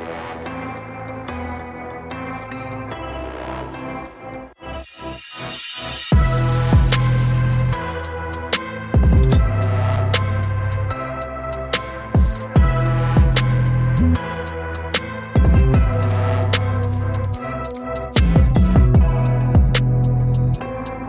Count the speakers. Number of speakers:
0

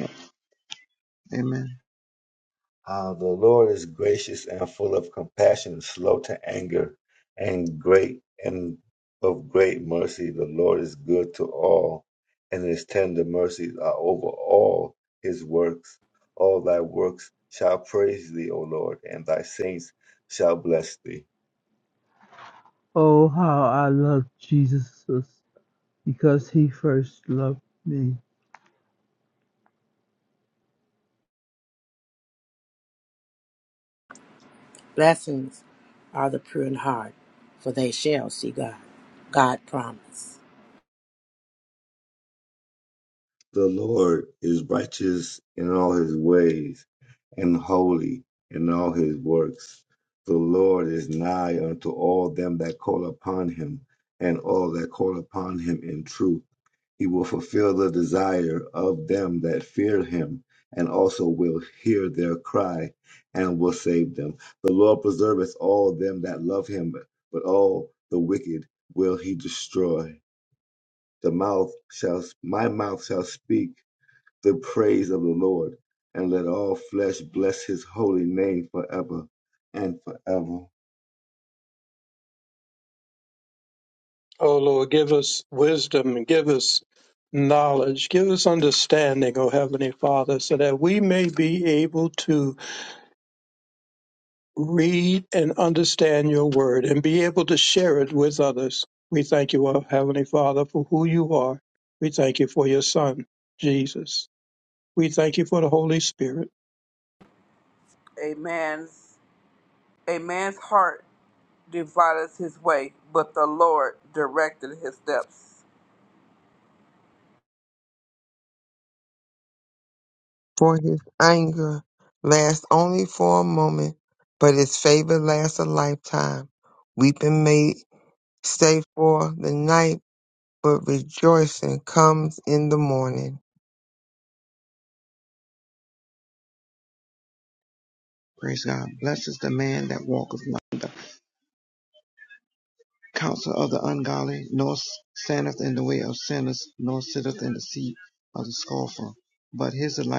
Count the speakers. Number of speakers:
7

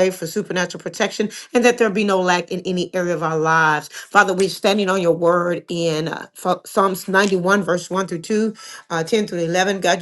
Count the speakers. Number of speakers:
1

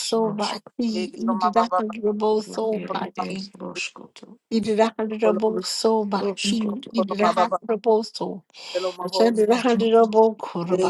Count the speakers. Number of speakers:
3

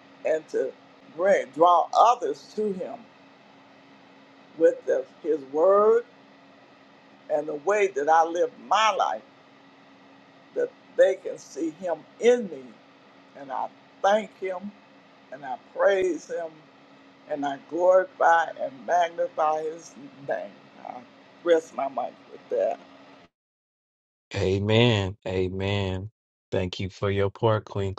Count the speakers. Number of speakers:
2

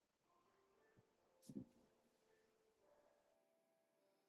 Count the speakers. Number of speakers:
0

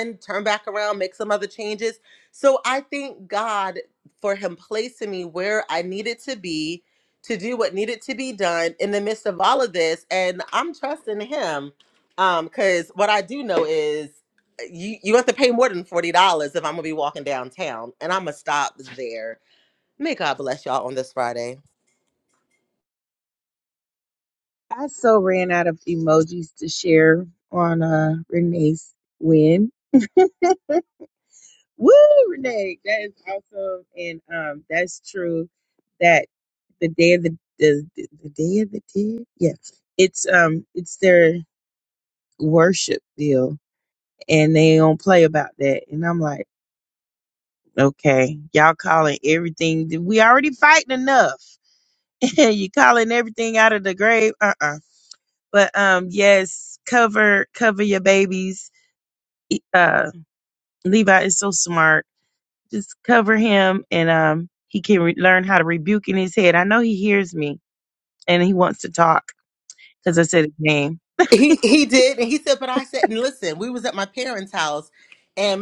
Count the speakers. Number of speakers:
2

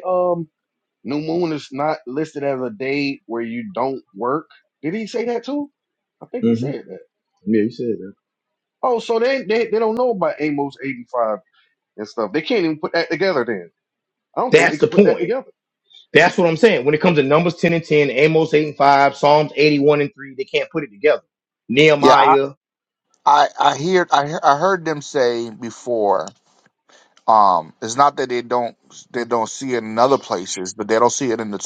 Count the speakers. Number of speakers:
3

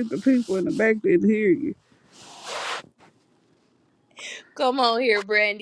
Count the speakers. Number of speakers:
2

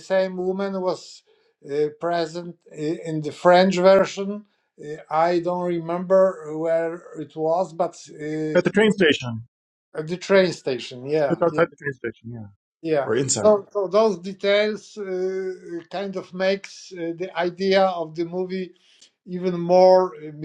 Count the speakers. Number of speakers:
2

